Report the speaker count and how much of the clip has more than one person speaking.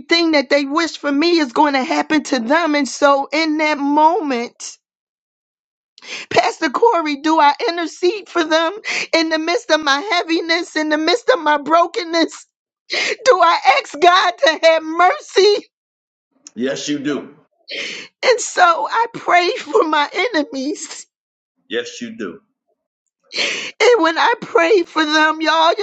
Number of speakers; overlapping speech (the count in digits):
2, no overlap